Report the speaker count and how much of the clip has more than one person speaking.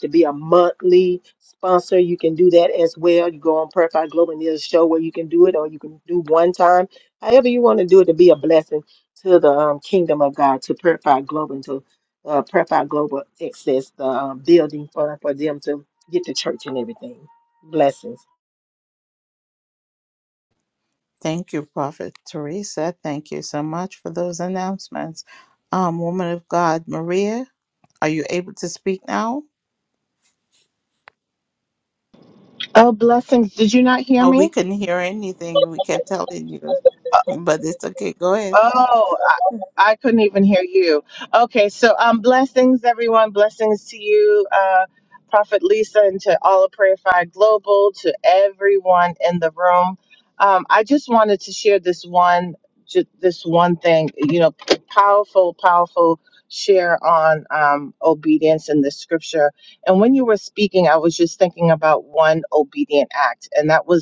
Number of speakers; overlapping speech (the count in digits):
3, about 1%